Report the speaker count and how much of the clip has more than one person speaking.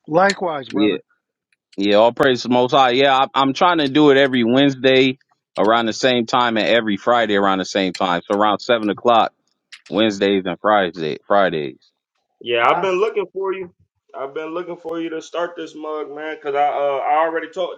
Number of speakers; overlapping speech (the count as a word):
three, about 1%